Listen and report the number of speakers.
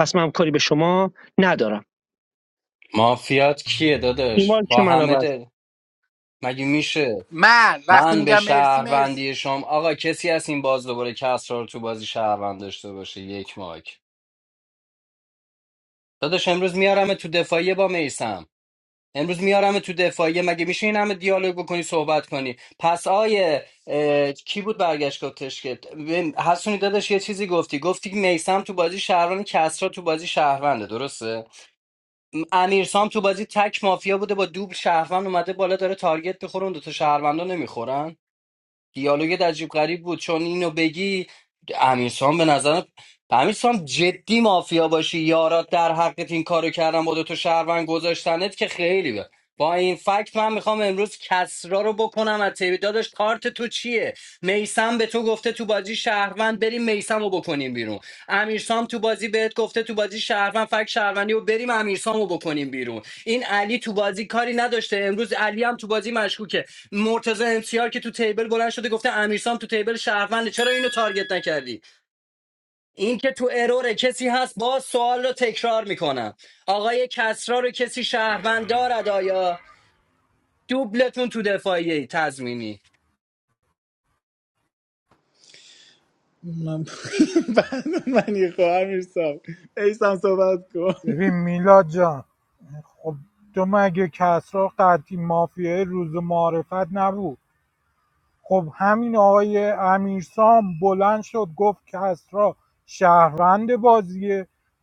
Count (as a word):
five